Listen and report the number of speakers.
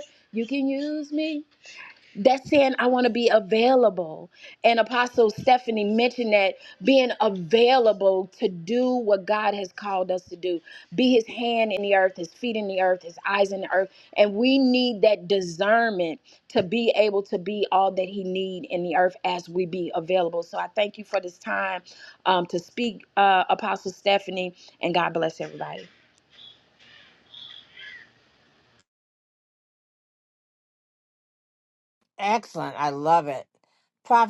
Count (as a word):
two